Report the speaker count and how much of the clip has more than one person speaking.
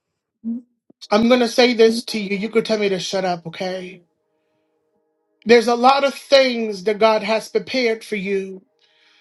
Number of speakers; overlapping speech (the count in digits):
1, no overlap